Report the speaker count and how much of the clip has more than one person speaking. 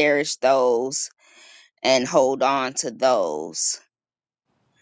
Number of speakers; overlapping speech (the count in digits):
1, no overlap